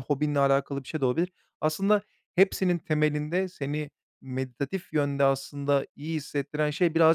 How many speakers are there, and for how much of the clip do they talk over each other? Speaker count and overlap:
one, no overlap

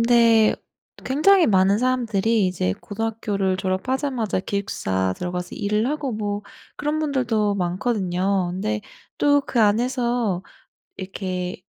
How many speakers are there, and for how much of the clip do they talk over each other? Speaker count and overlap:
one, no overlap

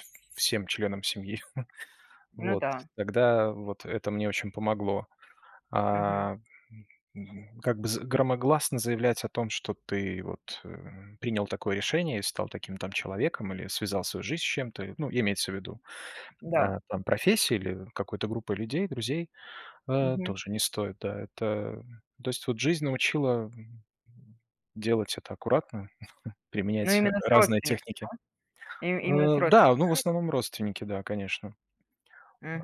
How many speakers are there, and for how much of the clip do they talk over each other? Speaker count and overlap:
two, about 9%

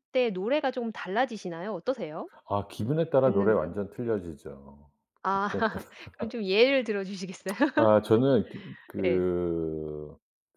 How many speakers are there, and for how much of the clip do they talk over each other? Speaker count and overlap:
two, about 7%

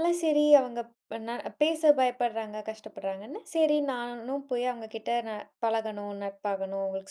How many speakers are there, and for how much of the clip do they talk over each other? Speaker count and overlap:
one, no overlap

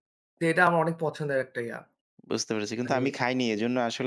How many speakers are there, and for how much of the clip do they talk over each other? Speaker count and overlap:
two, about 5%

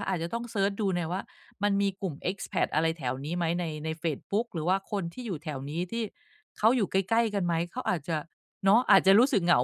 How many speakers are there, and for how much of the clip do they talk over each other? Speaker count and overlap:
one, no overlap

